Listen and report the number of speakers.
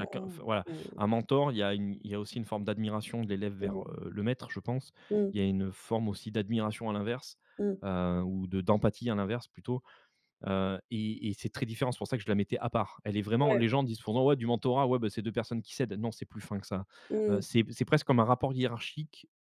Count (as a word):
two